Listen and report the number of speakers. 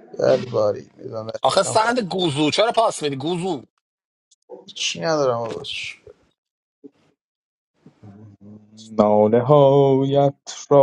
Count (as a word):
three